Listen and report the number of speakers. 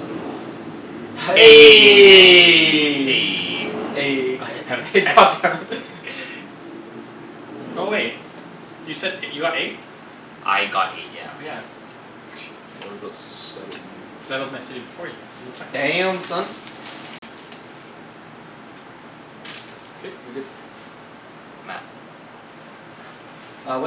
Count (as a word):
four